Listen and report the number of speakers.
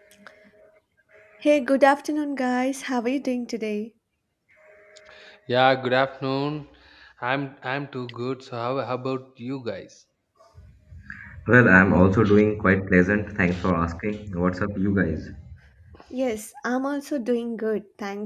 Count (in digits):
3